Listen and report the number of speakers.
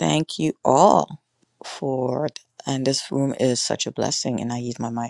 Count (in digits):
1